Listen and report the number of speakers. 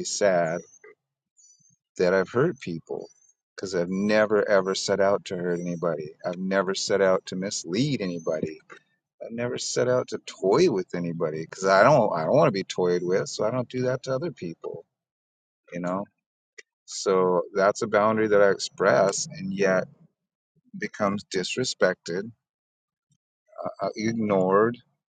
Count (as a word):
one